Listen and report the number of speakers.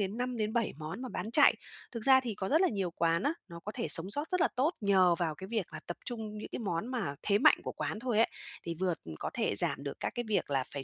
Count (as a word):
one